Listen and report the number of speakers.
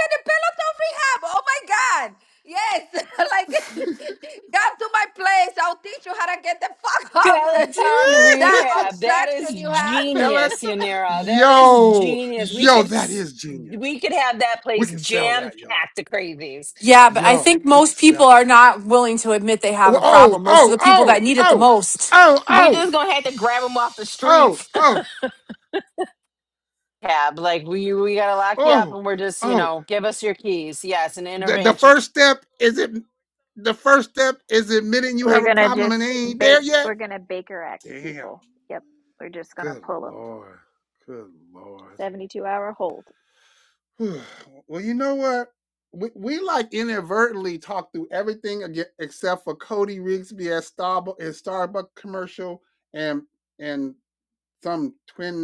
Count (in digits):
6